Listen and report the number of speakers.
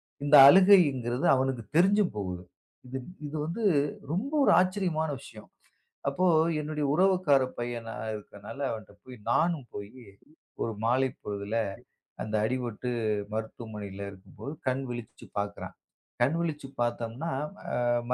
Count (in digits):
1